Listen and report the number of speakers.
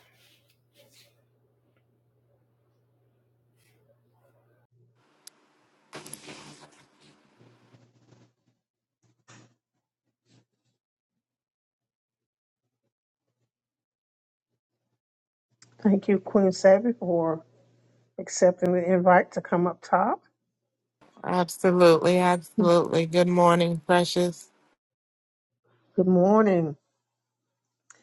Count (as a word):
two